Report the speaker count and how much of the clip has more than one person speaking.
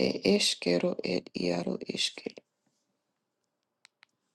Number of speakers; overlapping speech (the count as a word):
one, no overlap